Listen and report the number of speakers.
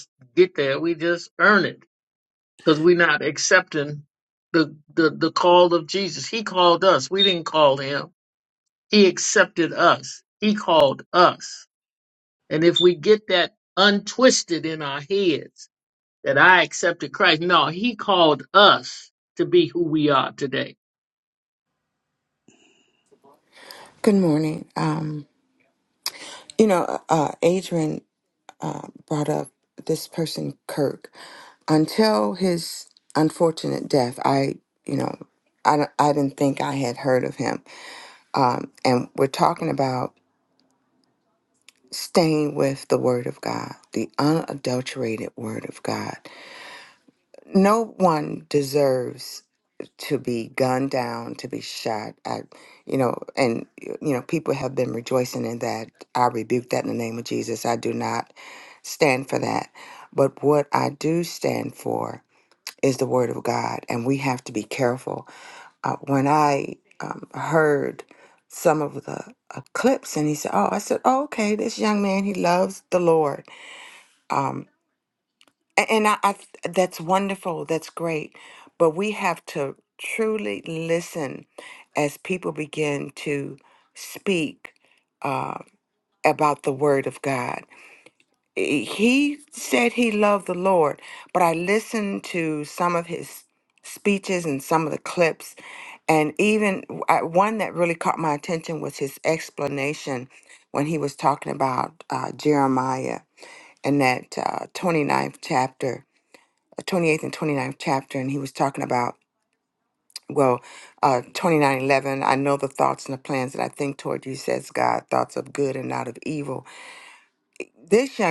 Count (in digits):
2